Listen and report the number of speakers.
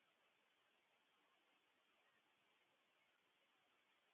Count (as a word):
zero